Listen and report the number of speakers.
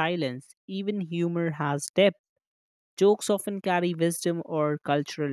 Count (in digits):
1